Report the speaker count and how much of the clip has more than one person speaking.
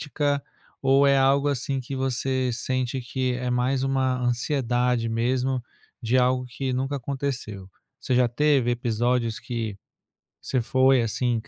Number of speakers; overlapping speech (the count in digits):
1, no overlap